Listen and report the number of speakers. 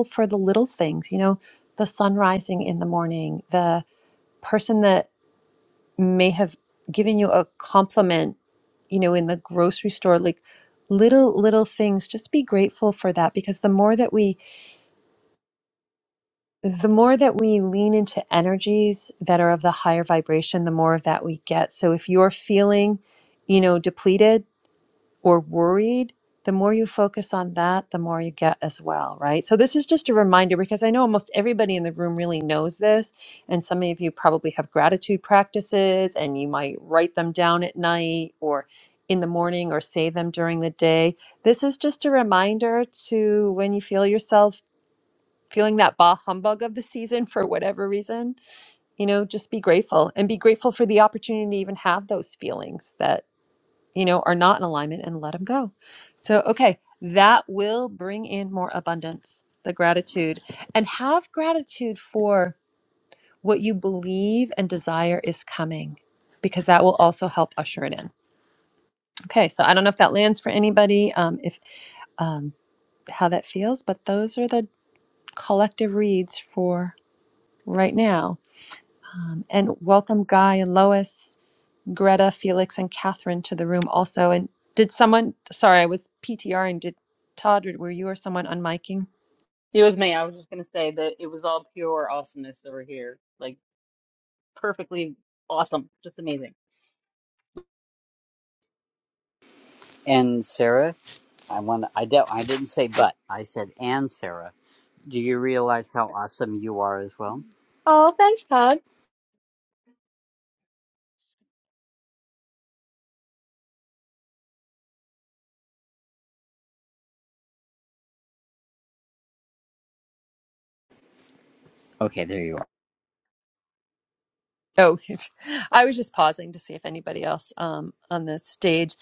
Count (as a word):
three